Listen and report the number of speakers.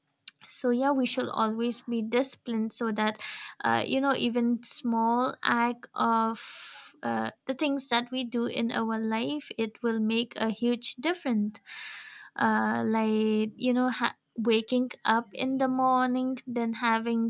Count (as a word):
one